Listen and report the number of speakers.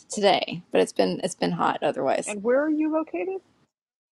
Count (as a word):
two